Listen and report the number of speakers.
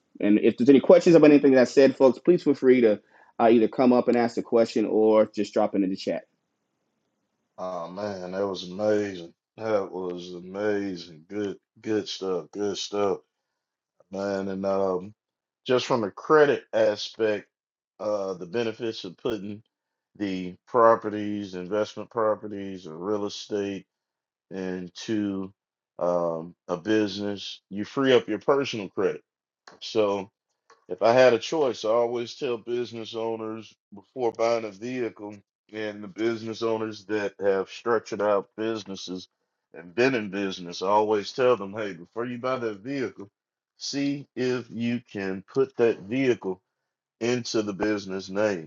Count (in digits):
2